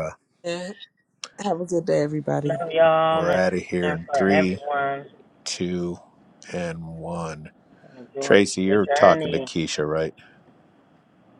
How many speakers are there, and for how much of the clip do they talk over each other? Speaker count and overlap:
three, about 22%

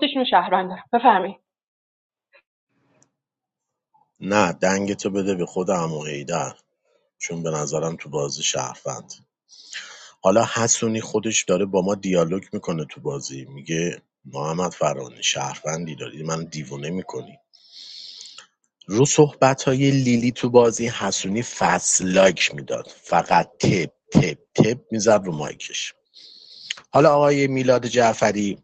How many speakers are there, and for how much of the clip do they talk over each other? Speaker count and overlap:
two, no overlap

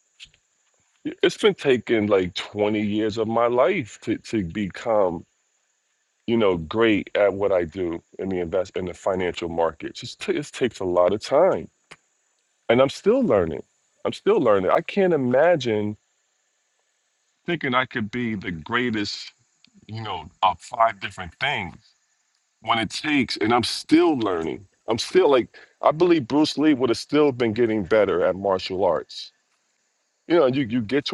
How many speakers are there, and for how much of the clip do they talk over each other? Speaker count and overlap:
one, no overlap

